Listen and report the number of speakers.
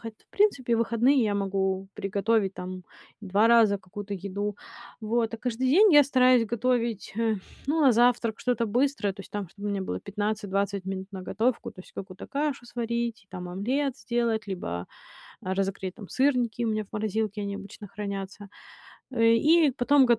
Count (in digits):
1